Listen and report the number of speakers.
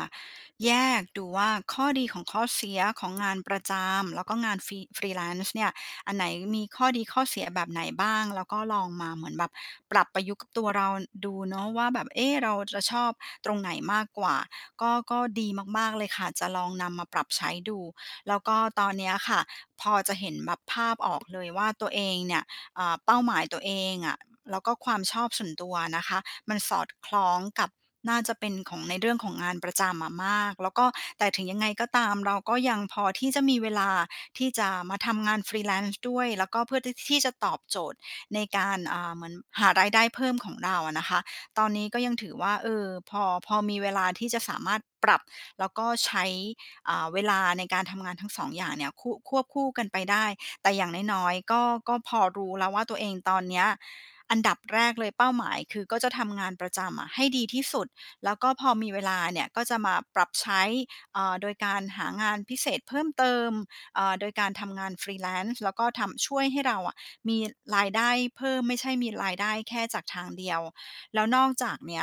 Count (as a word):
one